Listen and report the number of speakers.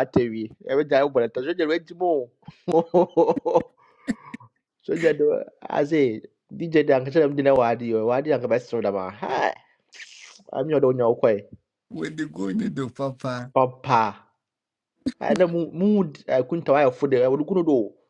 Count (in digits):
2